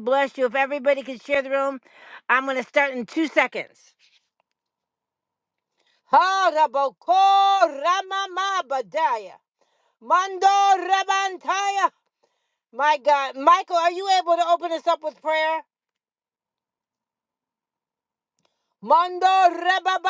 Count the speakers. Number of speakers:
1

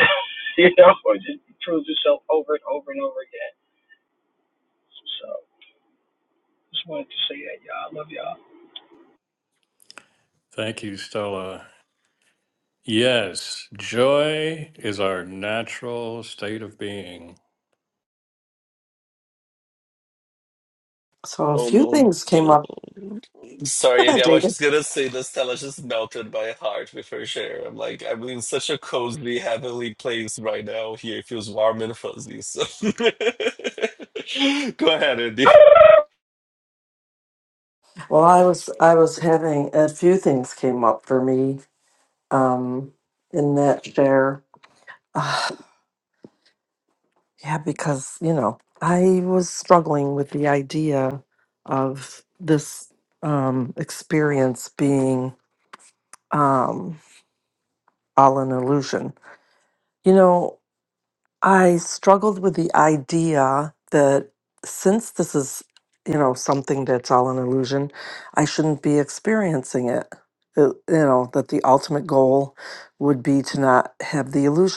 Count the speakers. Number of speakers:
4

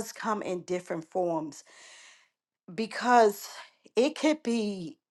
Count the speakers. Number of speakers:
1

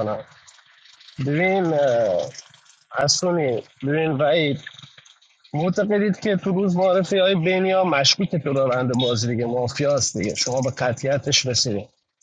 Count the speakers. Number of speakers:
1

